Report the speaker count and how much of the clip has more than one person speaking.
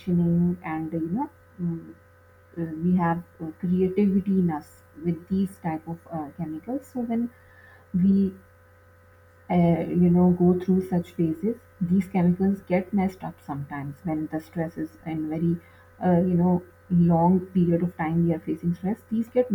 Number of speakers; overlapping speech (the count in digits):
1, no overlap